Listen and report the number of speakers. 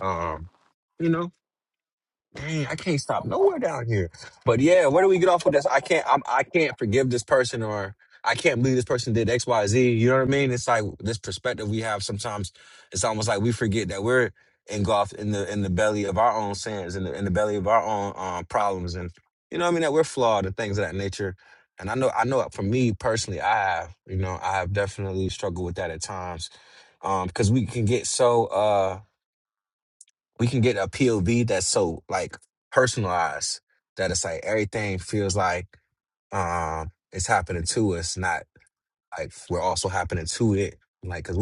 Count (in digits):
1